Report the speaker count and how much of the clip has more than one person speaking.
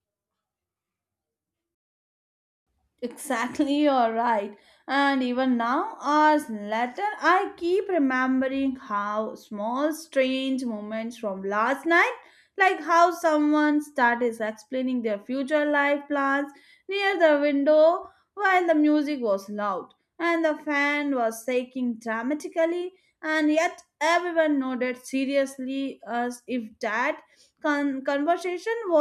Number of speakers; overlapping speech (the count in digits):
1, no overlap